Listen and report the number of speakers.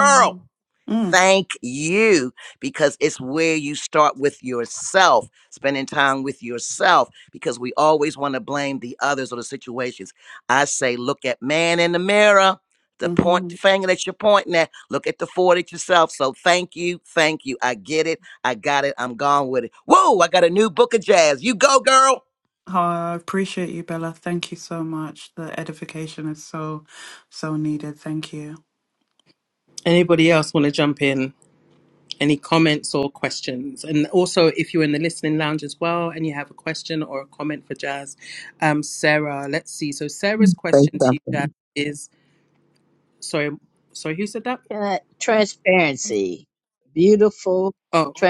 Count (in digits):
4